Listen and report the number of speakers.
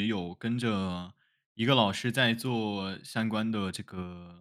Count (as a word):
one